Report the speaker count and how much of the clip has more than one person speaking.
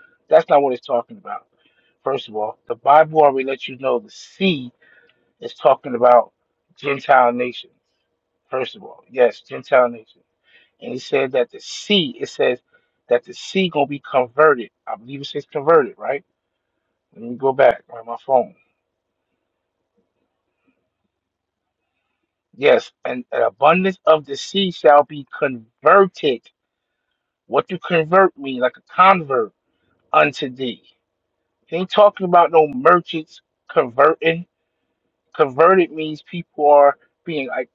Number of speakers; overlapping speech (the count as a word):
one, no overlap